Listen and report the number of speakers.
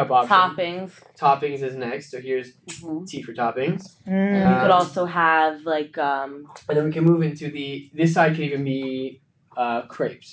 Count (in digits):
2